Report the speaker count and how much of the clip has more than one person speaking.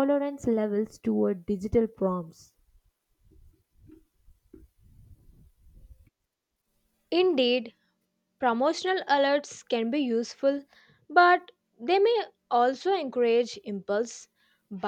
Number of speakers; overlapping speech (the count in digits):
2, no overlap